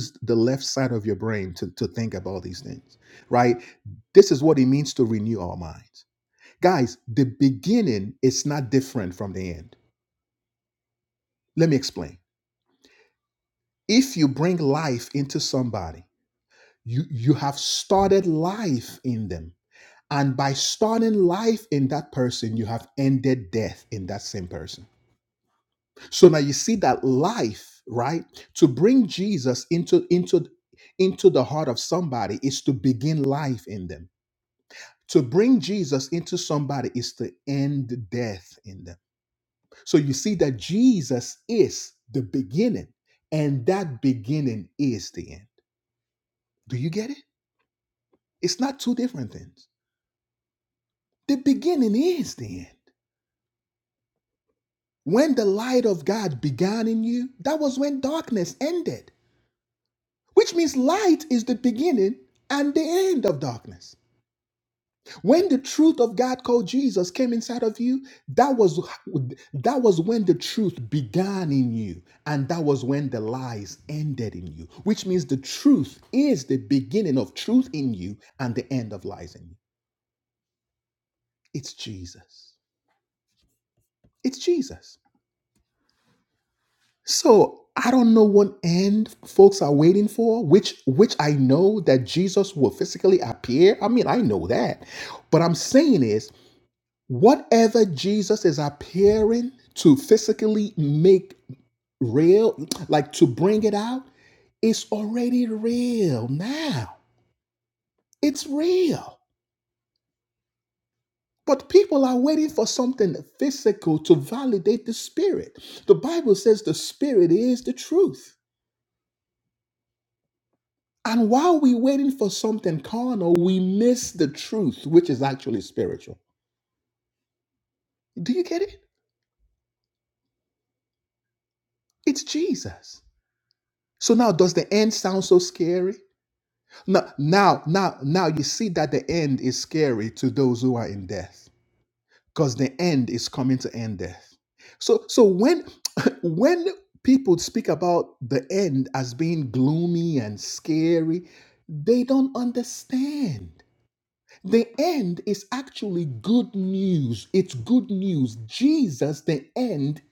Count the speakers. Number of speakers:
1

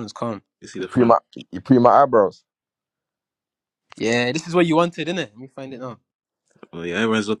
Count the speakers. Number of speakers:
3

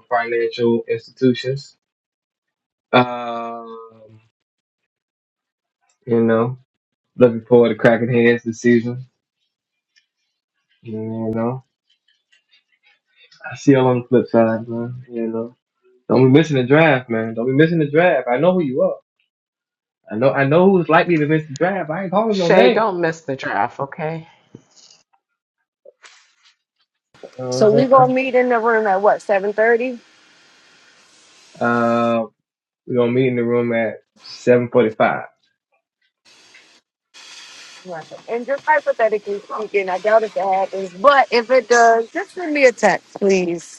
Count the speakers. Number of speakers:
3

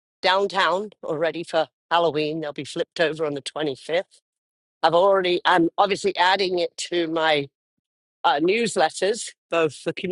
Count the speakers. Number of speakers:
1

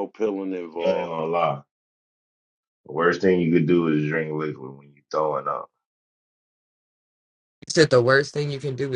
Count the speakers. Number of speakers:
3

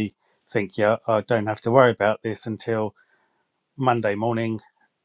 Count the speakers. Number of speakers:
1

